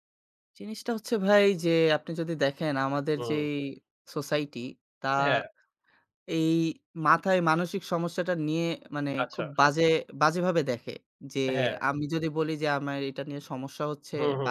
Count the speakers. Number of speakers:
2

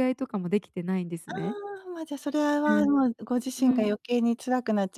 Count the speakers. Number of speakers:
2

